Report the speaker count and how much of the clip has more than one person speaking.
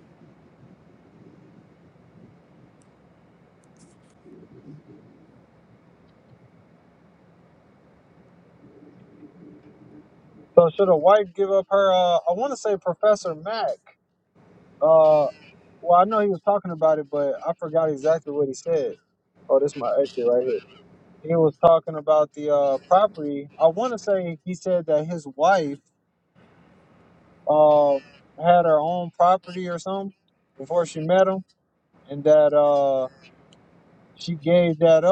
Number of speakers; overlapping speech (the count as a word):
one, no overlap